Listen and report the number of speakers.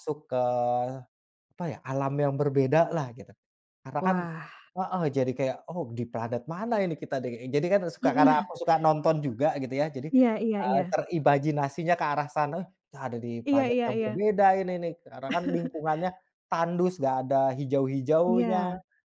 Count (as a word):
two